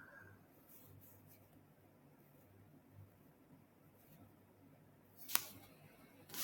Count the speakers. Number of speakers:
zero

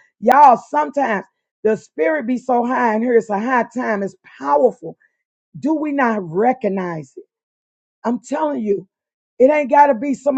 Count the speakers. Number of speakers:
one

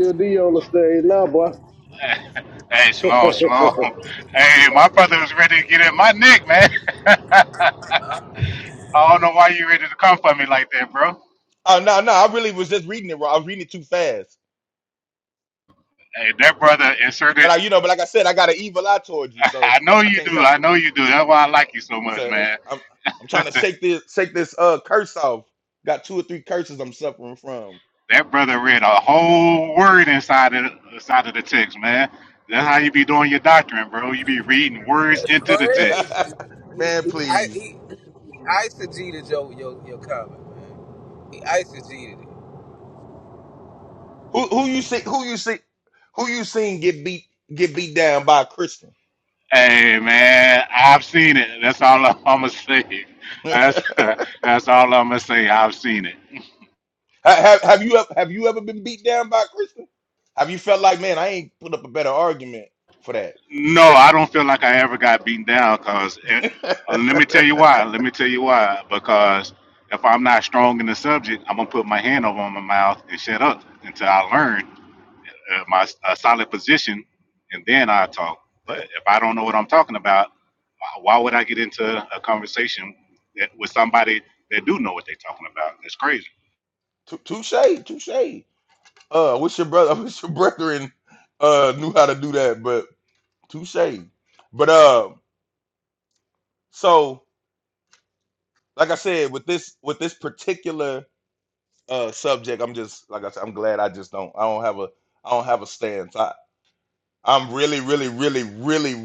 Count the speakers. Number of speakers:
four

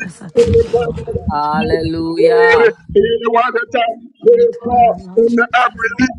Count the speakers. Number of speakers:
three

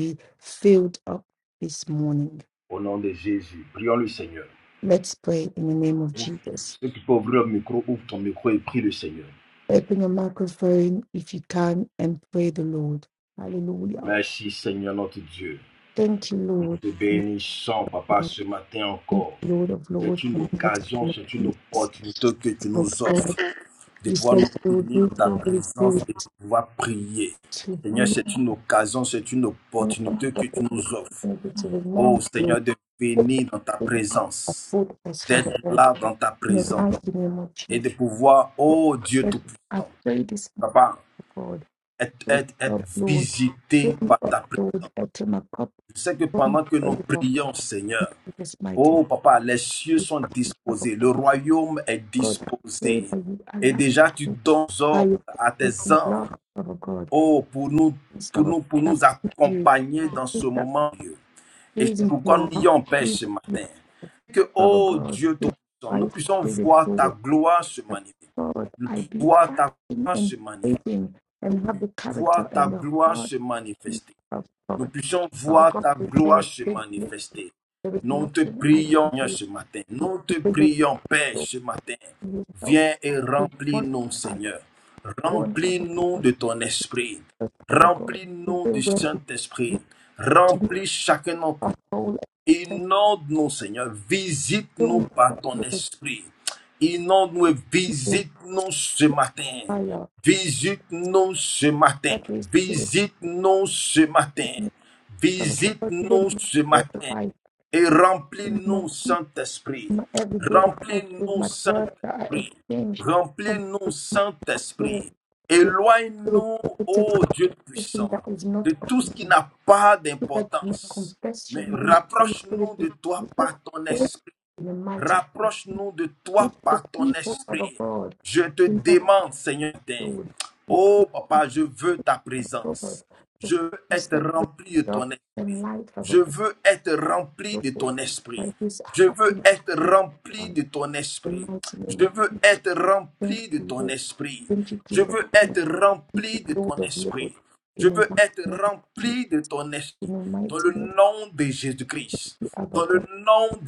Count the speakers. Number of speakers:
two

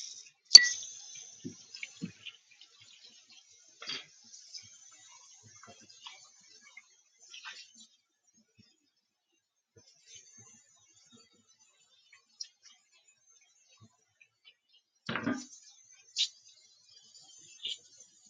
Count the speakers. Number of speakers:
zero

